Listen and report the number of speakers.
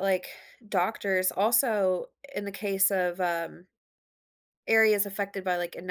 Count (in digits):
1